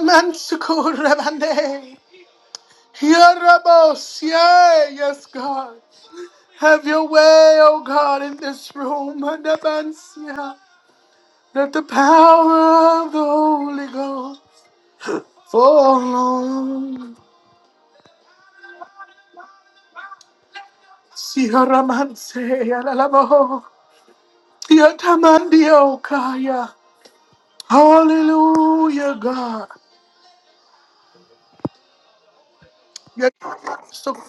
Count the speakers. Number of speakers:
one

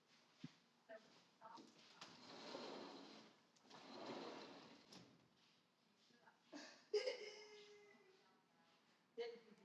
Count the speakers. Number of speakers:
zero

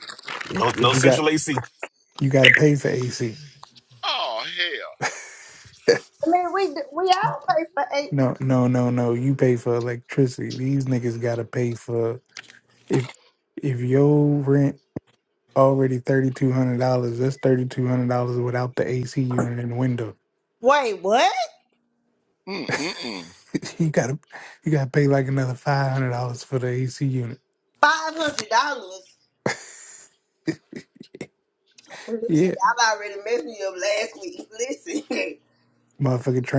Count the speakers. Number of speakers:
four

